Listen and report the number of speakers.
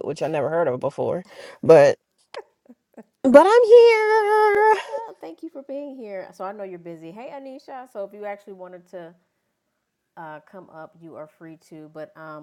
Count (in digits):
2